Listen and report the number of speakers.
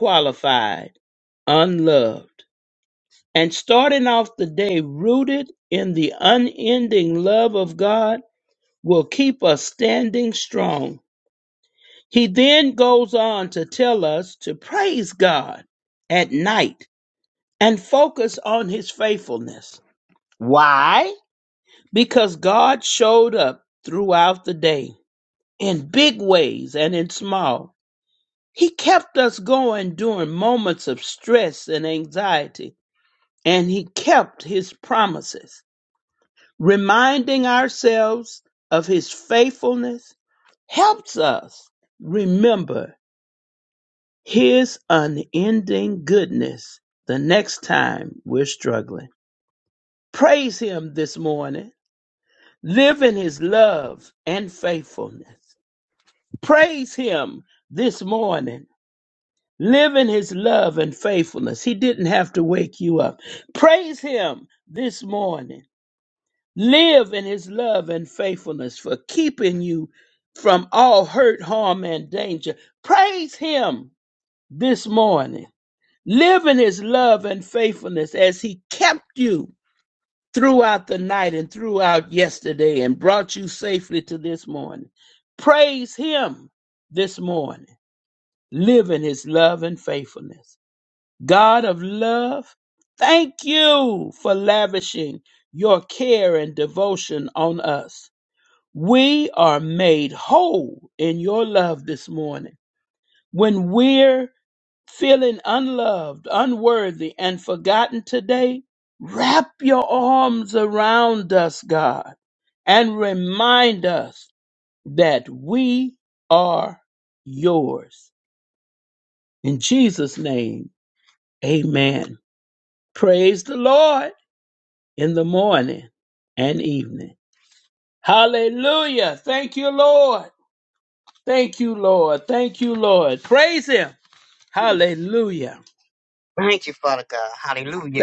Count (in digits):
2